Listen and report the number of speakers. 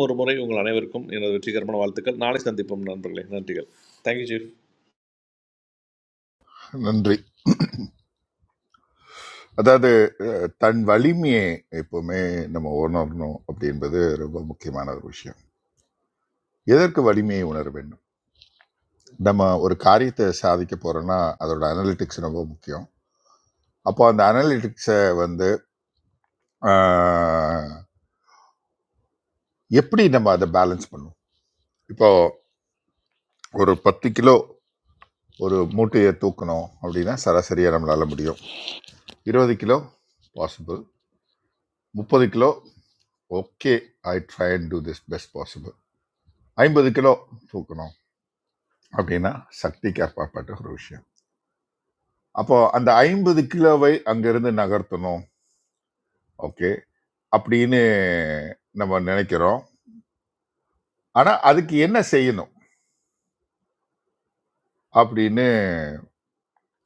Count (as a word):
two